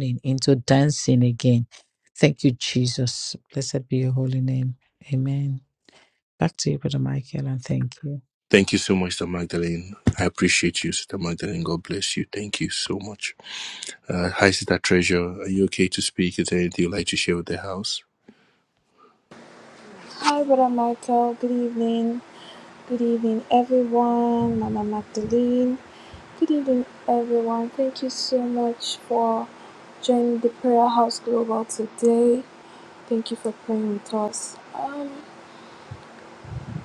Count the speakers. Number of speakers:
3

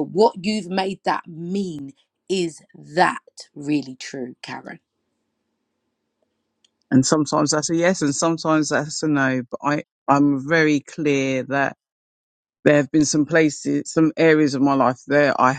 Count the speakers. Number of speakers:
2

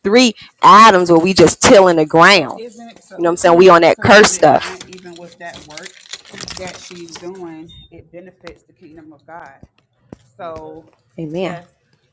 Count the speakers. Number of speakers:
2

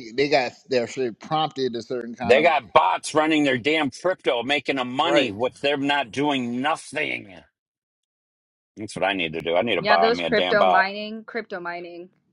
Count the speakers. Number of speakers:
3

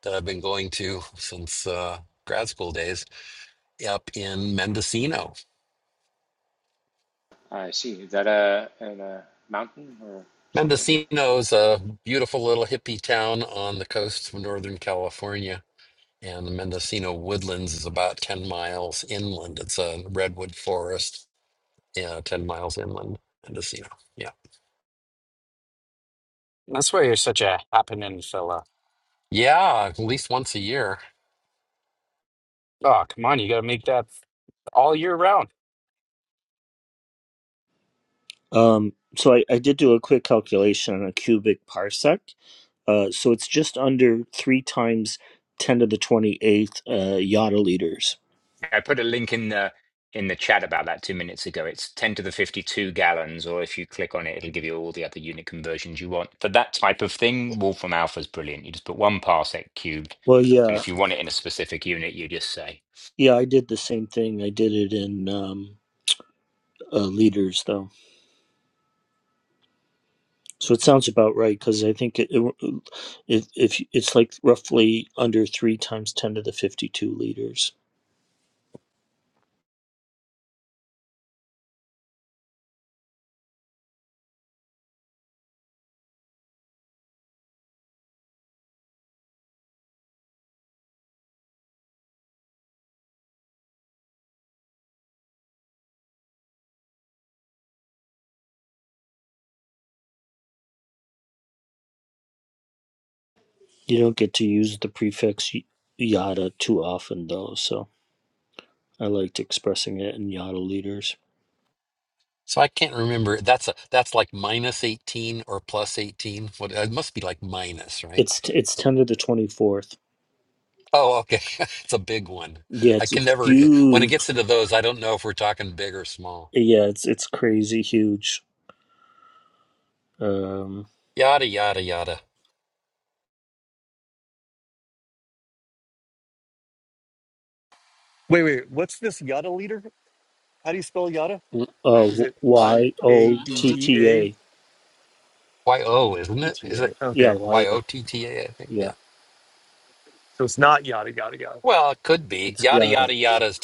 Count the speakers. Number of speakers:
6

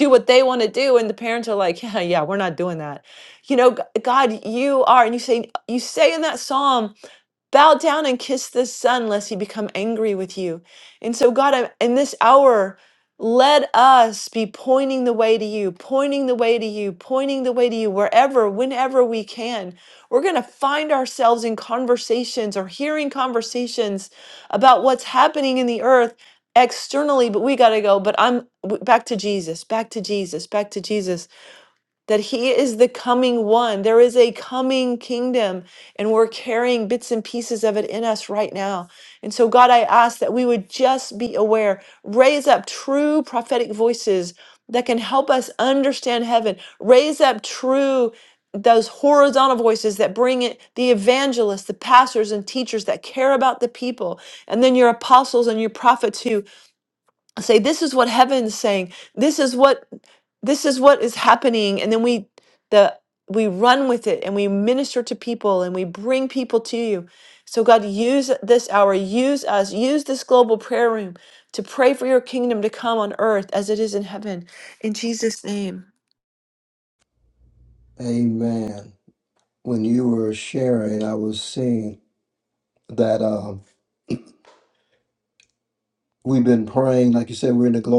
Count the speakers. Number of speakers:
2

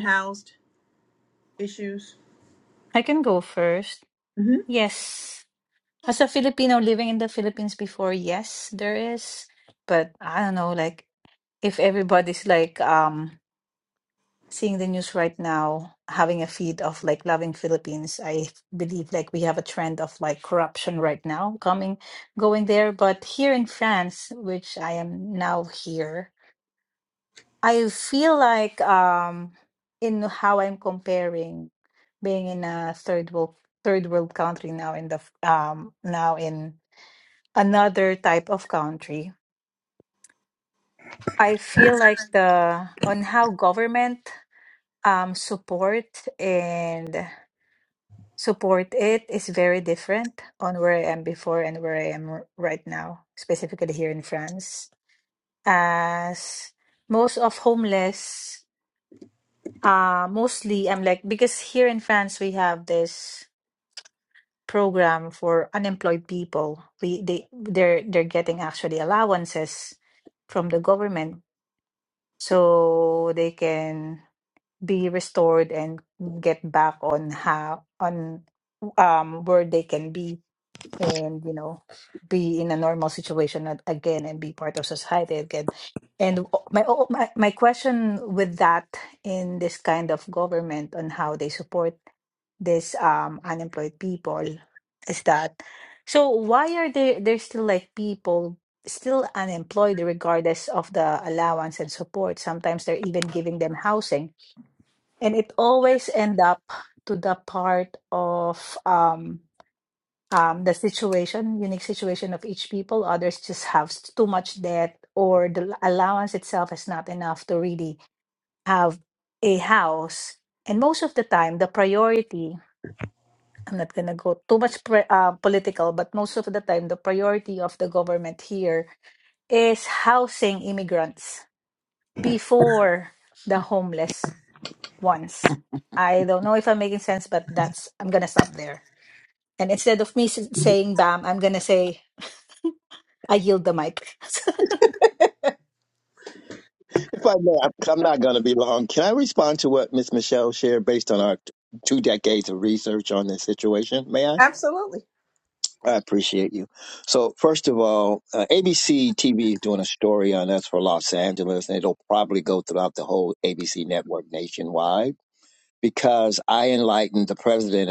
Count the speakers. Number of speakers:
3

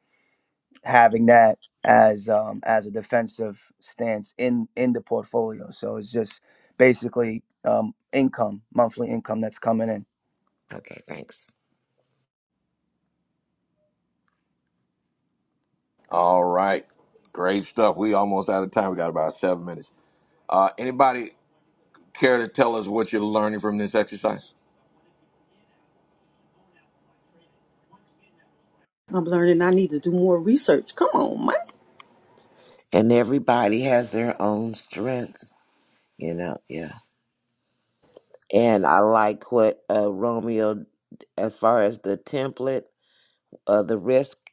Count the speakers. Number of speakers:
4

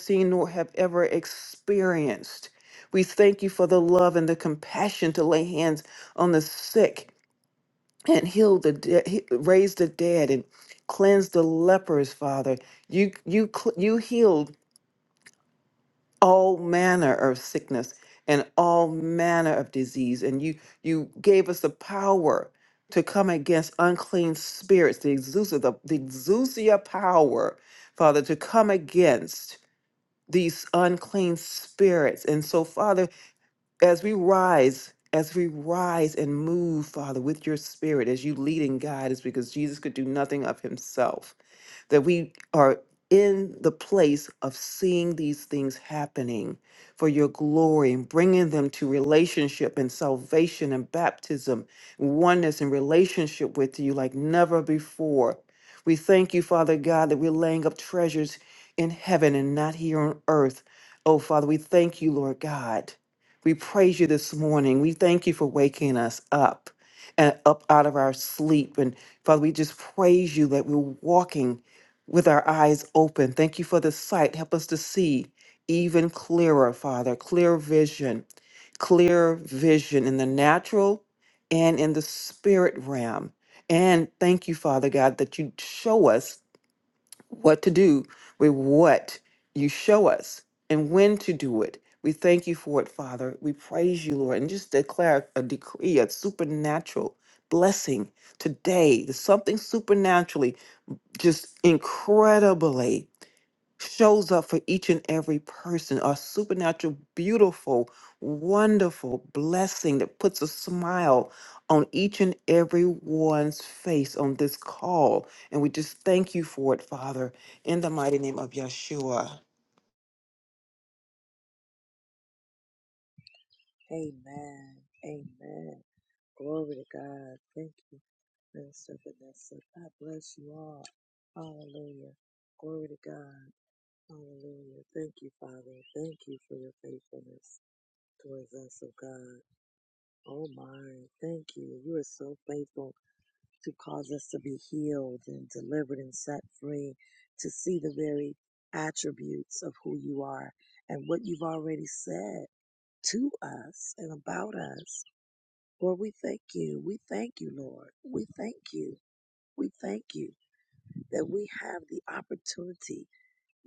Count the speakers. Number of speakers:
2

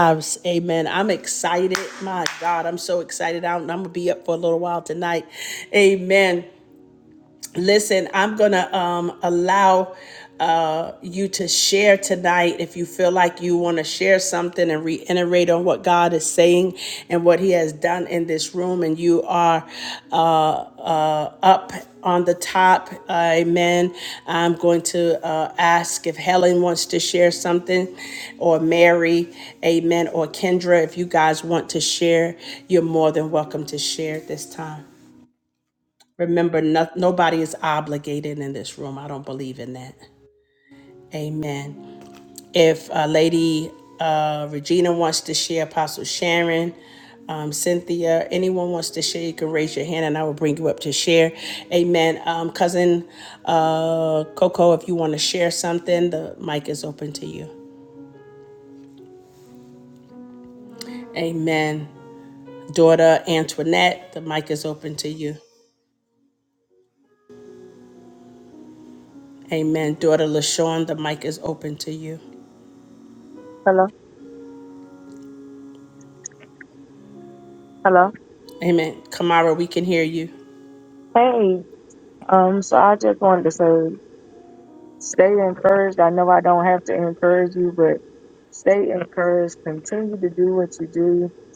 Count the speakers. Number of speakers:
2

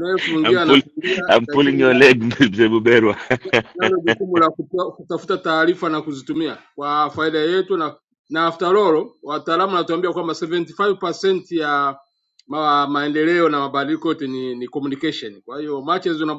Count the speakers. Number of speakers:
2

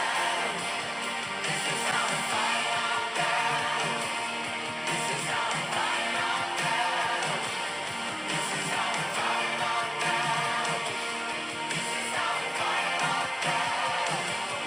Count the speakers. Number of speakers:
0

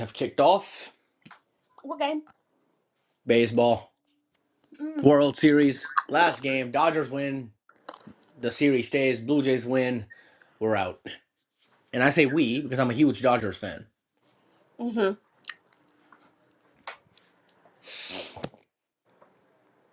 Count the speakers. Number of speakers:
2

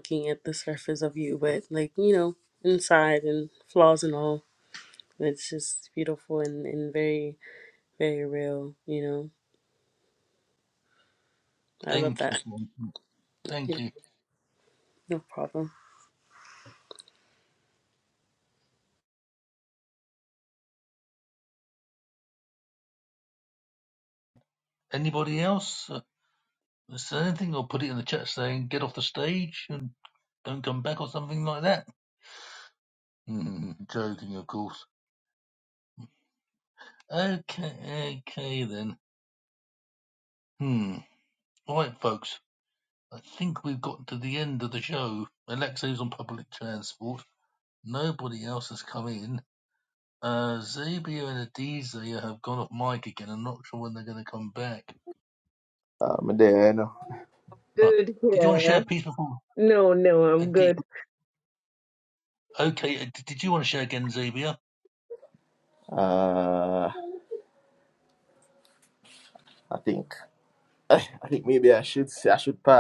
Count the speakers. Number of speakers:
4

